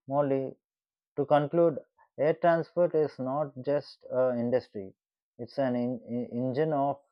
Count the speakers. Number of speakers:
1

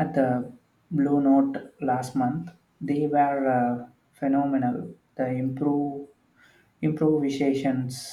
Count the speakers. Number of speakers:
1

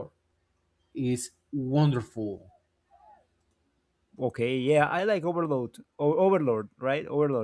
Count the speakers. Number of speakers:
2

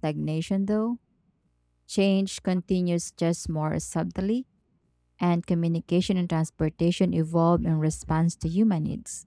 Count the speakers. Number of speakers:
1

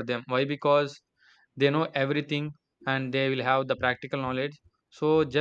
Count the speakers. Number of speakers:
1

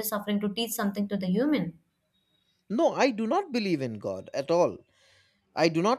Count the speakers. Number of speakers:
2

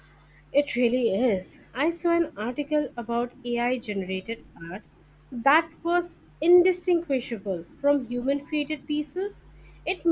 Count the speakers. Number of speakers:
1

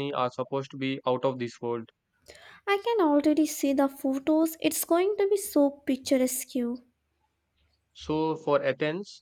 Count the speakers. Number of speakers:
2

